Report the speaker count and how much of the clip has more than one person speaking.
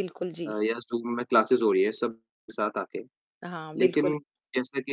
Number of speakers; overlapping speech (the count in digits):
2, about 10%